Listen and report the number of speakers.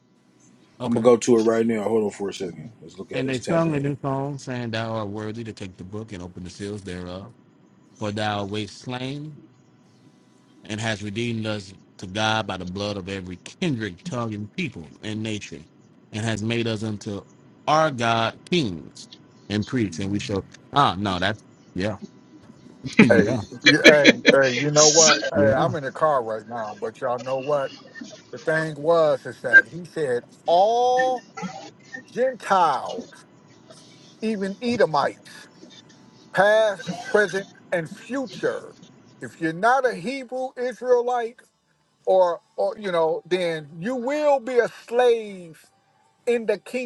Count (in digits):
3